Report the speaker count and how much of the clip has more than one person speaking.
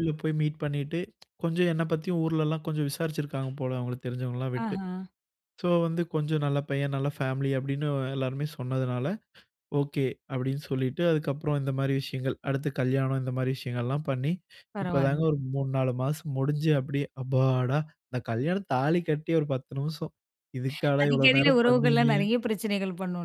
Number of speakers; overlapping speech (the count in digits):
2, about 7%